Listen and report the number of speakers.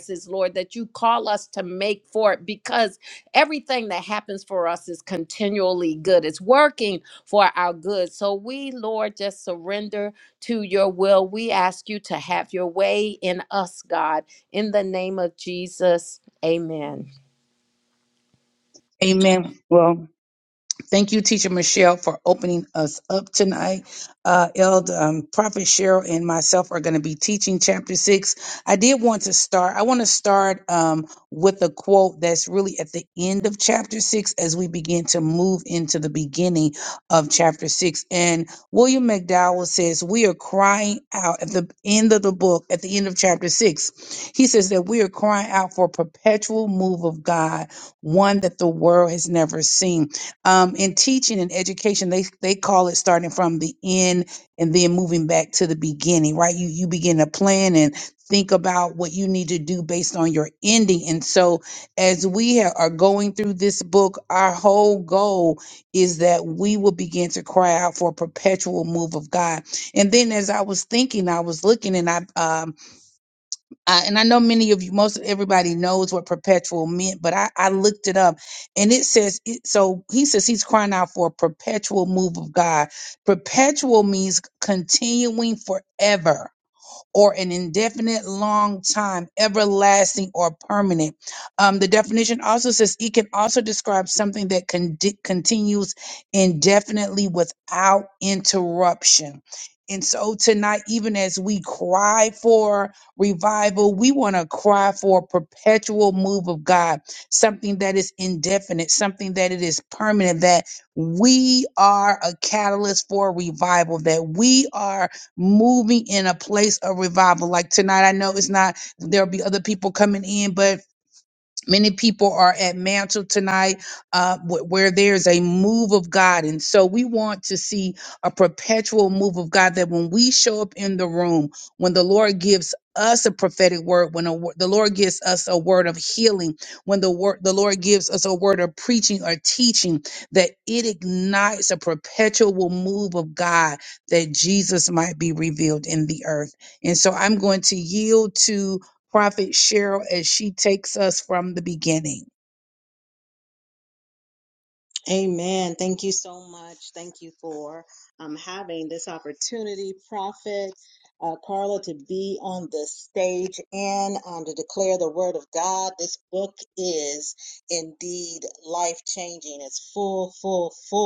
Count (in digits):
3